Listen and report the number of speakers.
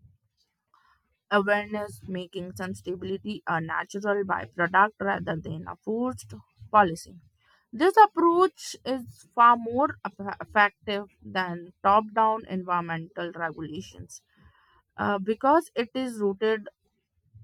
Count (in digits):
1